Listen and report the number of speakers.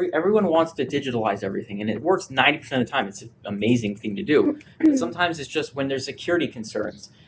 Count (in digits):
1